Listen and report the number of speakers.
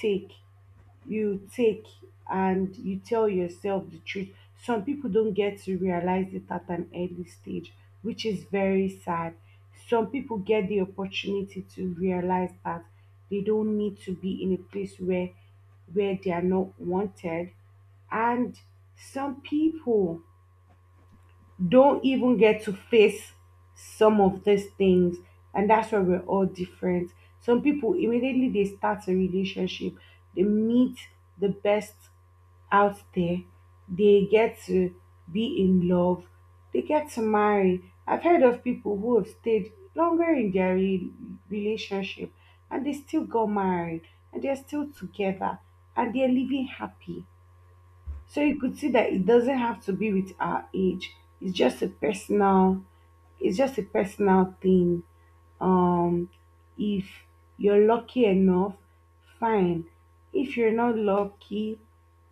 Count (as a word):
one